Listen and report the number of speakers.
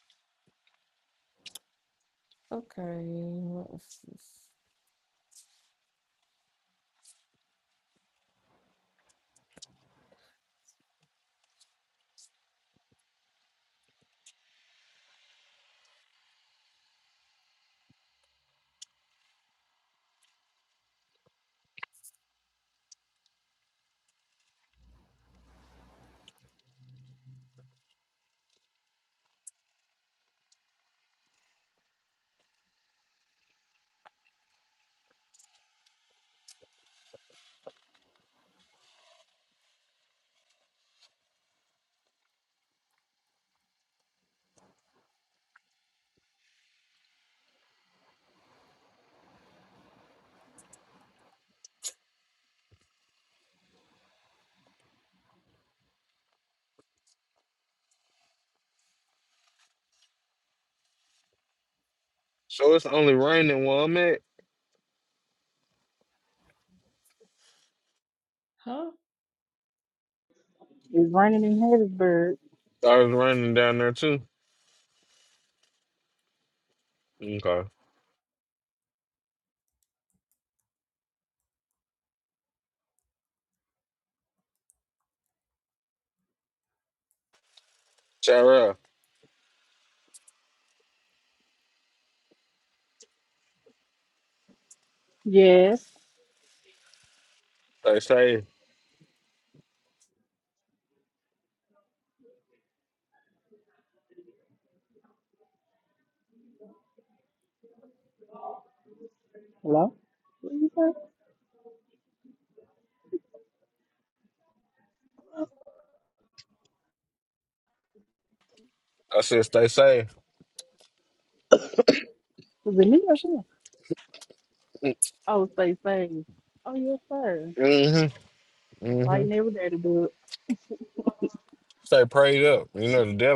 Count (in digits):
3